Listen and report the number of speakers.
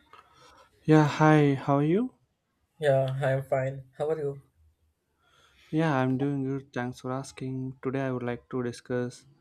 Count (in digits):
2